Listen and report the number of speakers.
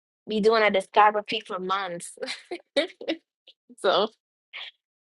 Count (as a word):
one